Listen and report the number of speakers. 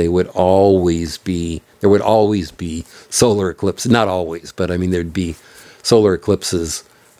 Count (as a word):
one